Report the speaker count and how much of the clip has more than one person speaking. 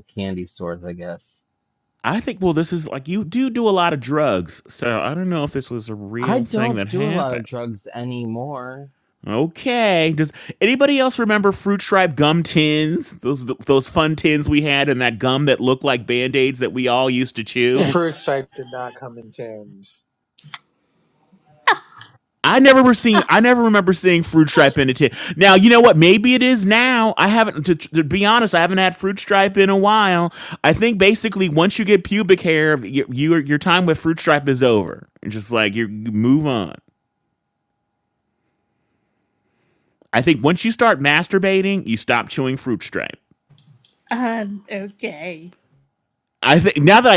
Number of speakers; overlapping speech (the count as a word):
four, about 3%